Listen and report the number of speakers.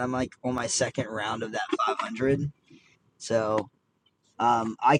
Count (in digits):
1